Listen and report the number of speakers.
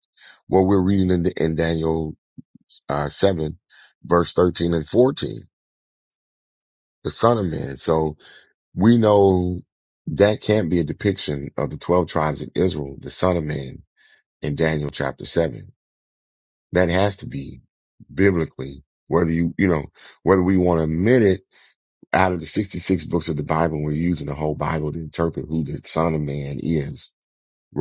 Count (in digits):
1